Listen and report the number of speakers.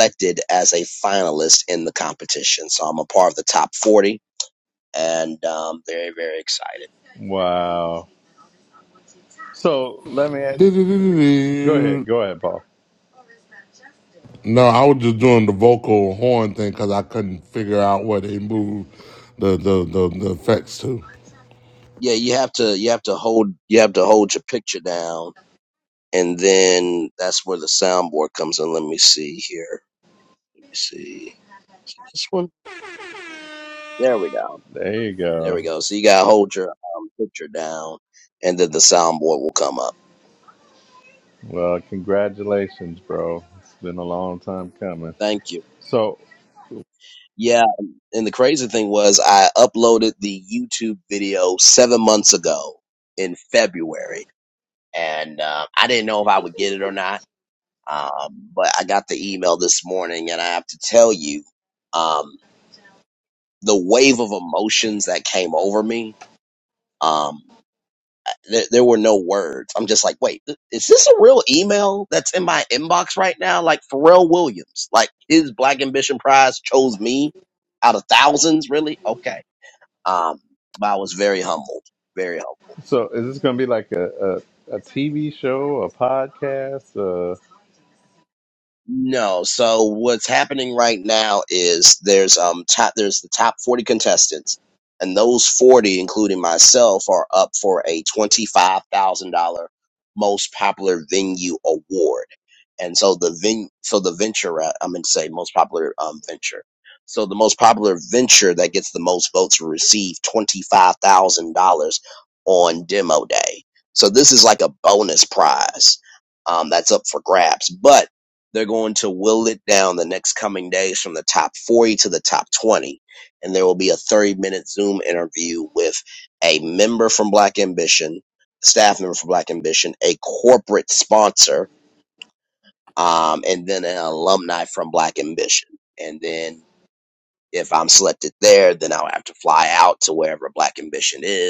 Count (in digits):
3